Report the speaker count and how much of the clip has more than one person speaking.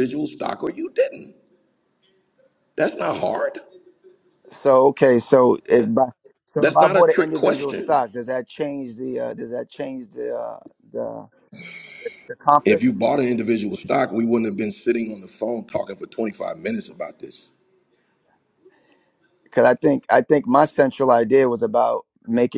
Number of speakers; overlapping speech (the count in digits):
2, about 7%